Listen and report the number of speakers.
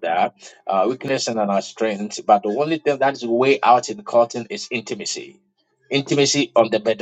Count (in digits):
1